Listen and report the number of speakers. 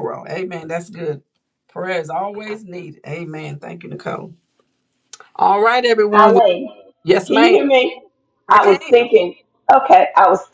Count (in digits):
2